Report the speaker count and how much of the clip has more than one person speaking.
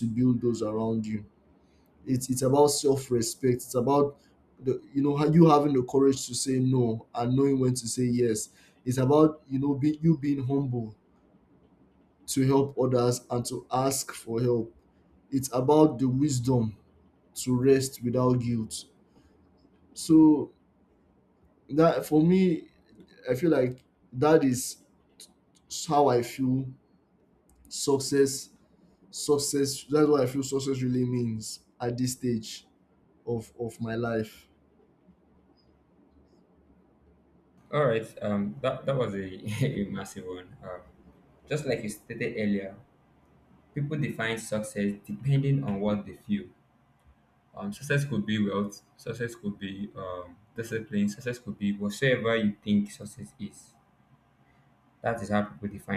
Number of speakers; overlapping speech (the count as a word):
two, no overlap